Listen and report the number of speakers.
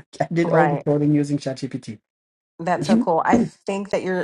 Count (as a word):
two